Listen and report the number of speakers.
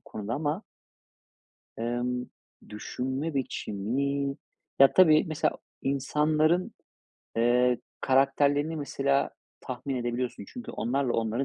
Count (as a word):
one